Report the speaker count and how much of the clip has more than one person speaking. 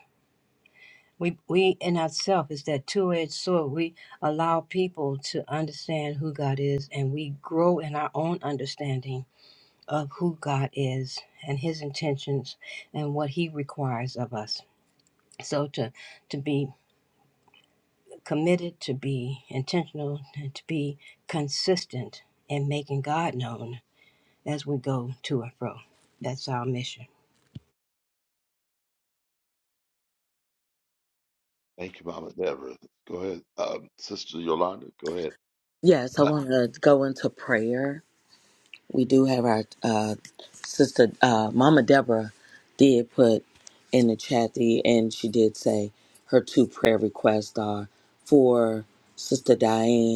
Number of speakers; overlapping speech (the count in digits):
3, under 1%